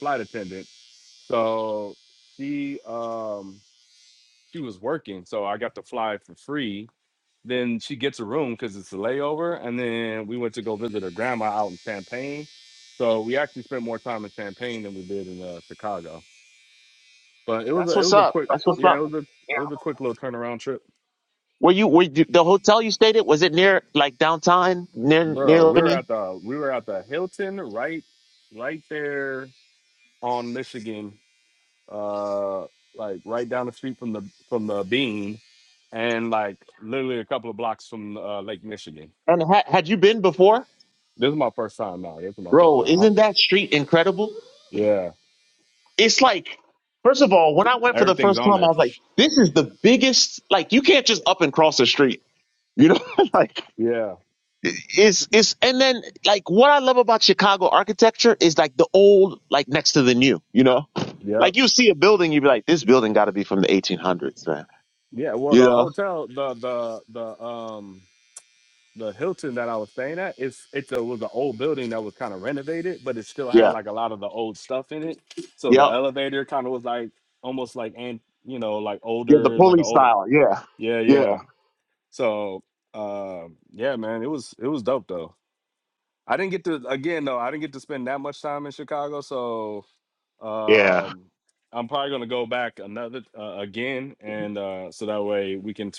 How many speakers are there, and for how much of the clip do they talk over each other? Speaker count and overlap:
2, about 6%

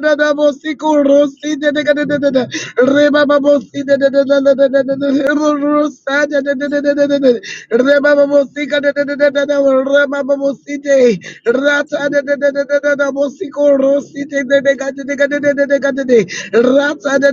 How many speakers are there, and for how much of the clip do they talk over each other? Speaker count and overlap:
1, no overlap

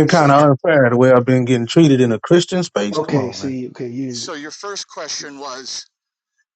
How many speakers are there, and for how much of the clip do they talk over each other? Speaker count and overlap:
3, about 17%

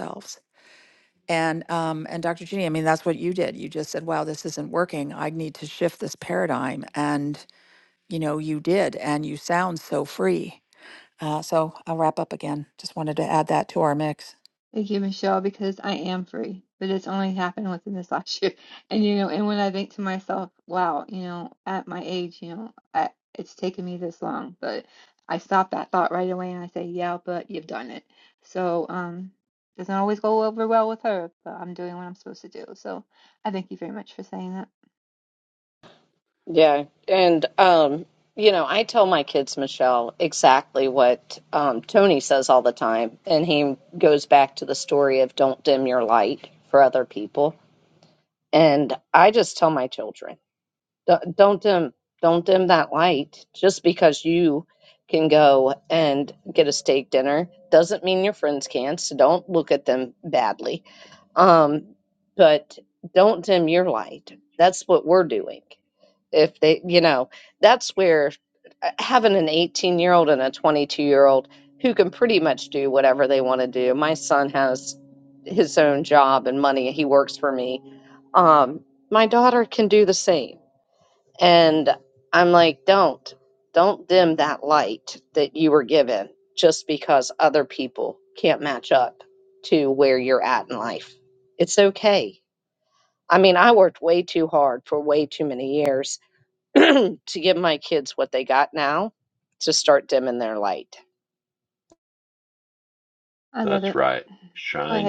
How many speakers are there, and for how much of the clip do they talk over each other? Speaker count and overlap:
4, under 1%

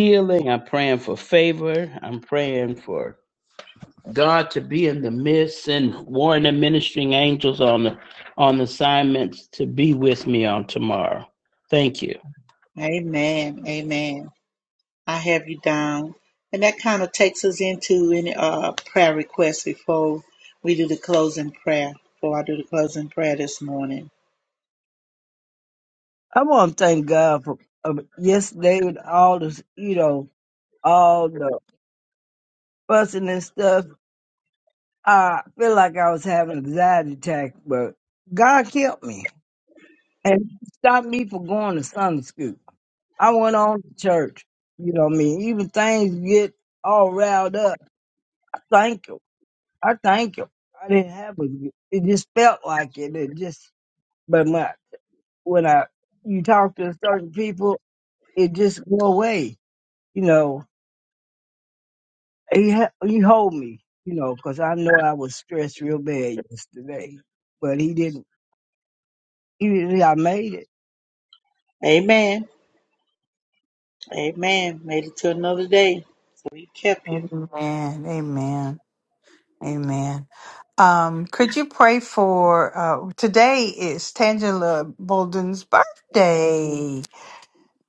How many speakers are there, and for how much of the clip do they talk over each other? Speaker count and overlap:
4, under 1%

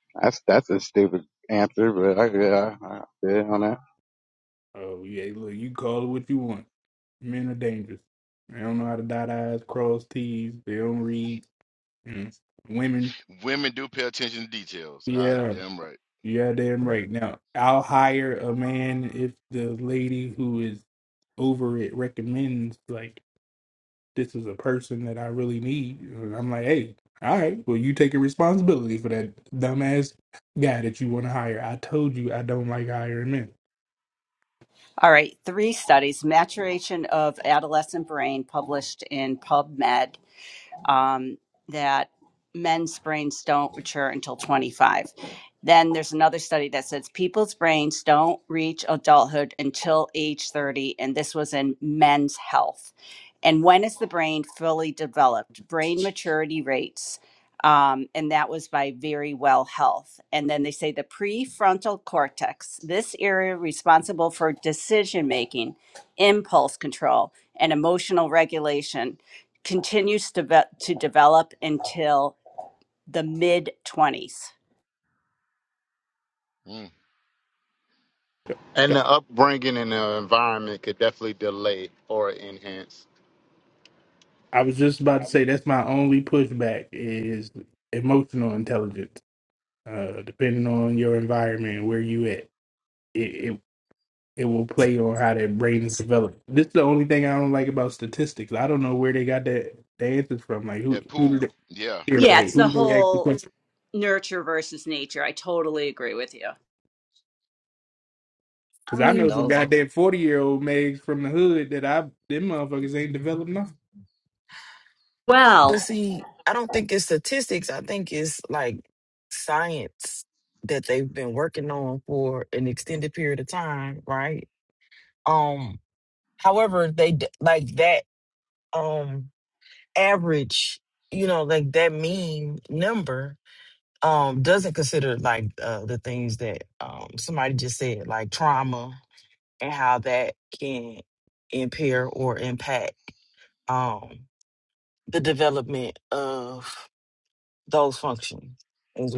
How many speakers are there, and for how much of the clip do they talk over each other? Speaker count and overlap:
6, about 2%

